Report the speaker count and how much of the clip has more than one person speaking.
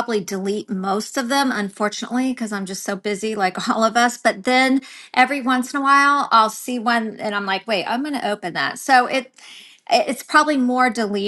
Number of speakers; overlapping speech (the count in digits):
1, no overlap